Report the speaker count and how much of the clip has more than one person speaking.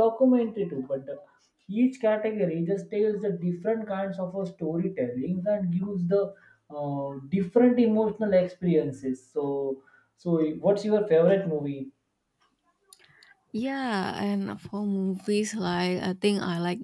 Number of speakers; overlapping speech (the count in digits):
2, no overlap